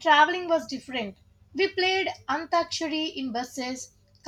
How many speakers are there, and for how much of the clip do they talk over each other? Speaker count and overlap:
1, no overlap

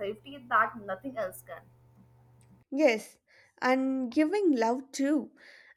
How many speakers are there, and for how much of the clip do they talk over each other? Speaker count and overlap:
2, no overlap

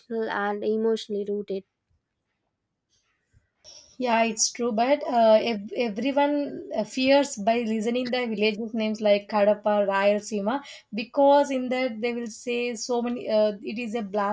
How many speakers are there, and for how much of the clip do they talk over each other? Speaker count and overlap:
2, no overlap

